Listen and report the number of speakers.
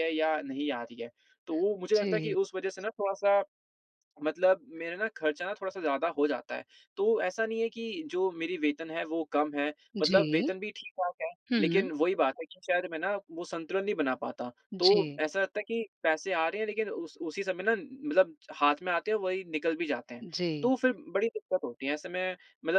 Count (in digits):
2